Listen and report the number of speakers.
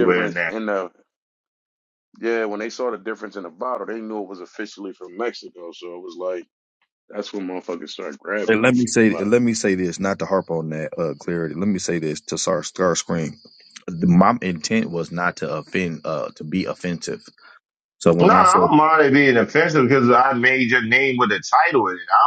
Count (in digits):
3